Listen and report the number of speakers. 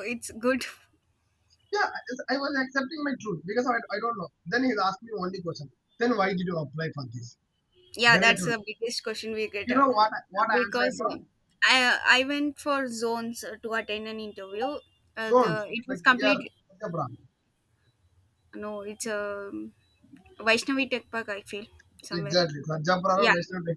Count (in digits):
2